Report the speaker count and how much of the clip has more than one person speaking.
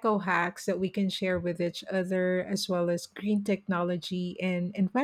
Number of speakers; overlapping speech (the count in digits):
1, no overlap